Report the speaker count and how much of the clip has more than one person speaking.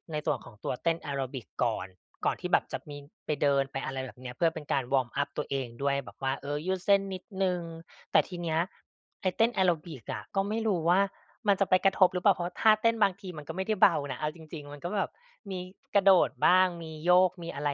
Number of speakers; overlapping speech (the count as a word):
one, no overlap